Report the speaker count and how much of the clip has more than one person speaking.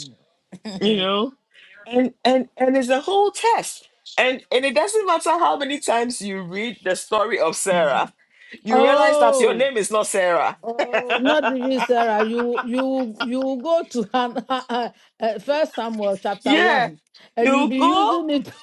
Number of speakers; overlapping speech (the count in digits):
2, about 13%